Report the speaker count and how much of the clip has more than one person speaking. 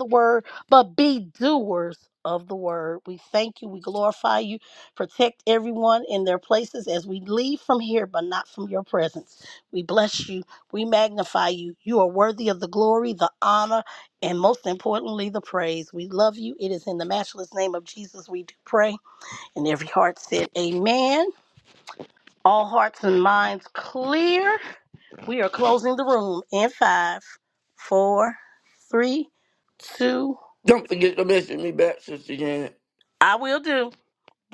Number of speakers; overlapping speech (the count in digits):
2, no overlap